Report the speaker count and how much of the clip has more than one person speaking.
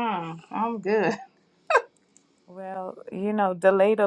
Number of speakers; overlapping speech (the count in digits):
2, no overlap